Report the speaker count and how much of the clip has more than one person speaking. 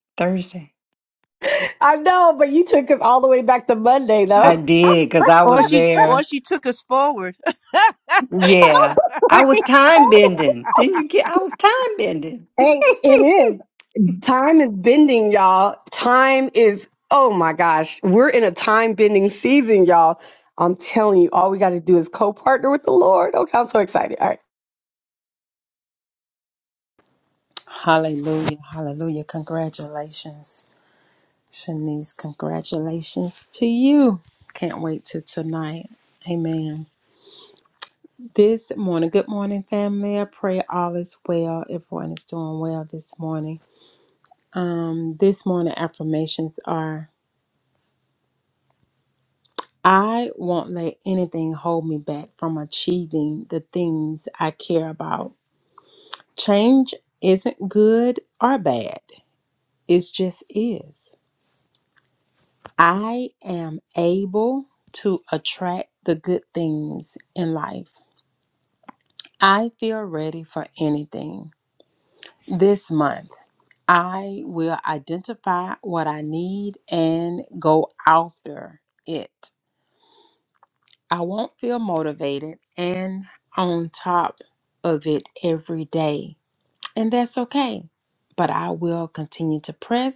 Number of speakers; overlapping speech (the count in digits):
4, about 2%